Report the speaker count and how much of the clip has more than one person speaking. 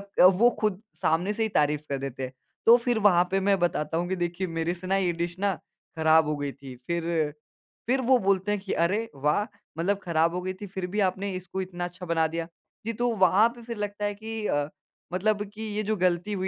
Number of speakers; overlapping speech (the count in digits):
1, no overlap